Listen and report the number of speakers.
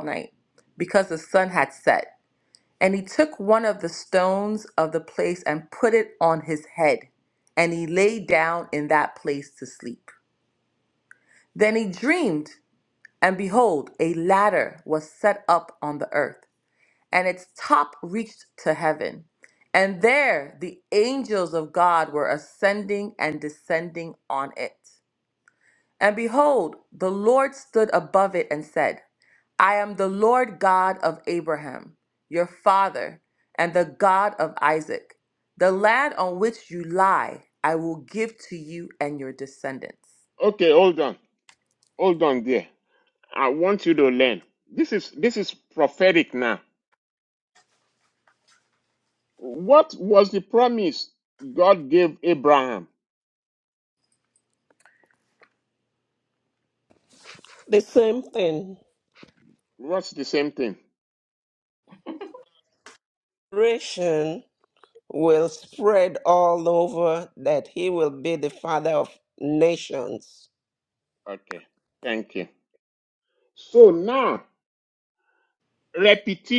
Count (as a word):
three